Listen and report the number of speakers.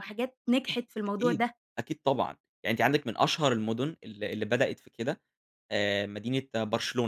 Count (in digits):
2